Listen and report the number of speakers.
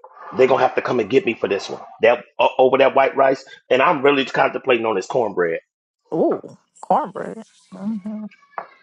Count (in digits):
2